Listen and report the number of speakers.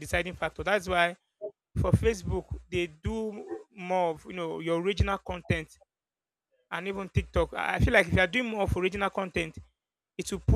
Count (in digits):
1